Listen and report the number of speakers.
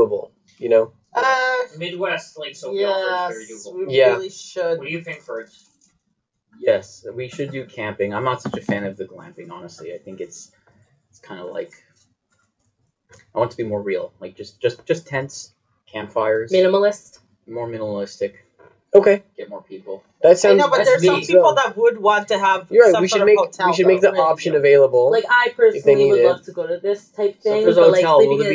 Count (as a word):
five